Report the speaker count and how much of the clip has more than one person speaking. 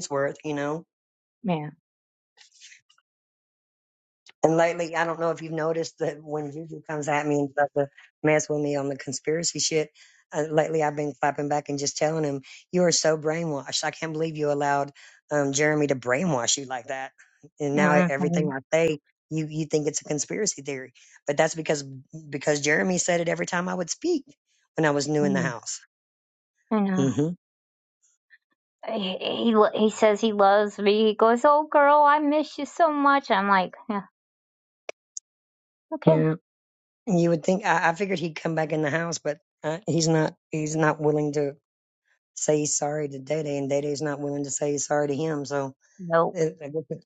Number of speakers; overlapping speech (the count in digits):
2, under 1%